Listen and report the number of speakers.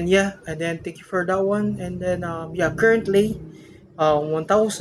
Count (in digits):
1